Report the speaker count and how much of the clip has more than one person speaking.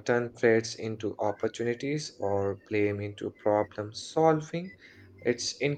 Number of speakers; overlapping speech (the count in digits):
1, no overlap